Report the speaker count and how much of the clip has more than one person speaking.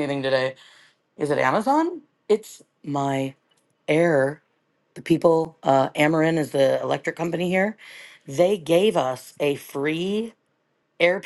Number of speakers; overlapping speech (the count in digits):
1, no overlap